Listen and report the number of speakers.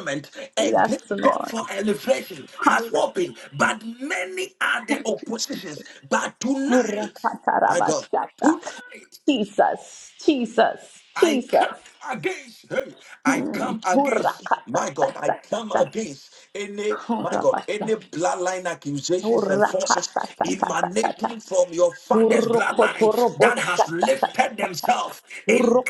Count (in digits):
2